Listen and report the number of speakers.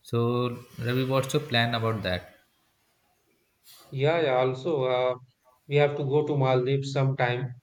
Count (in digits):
2